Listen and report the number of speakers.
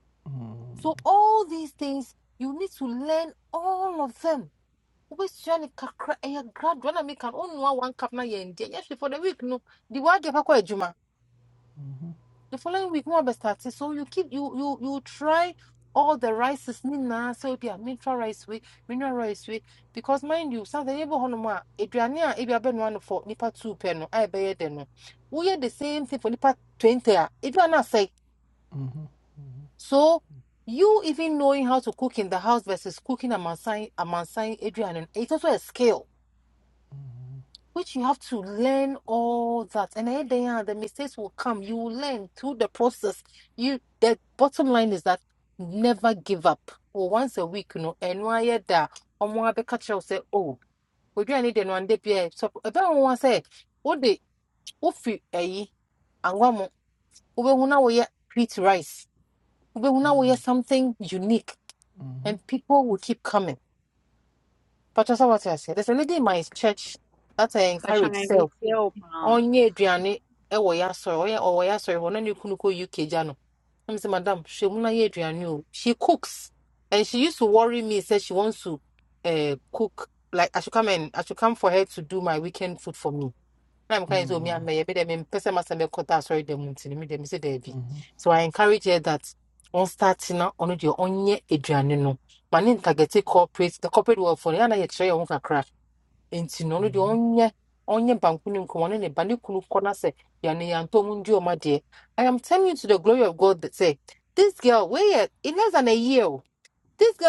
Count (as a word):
three